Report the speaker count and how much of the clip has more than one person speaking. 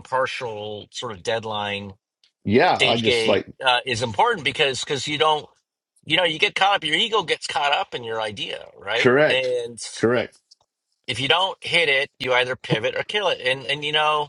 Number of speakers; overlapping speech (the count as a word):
two, about 9%